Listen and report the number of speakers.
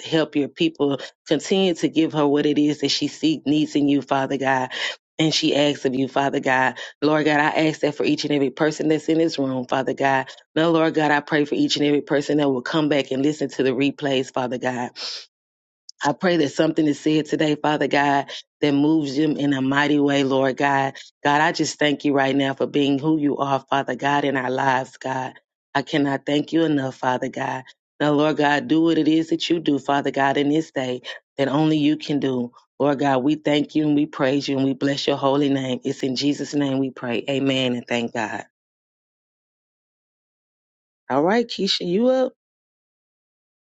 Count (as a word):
one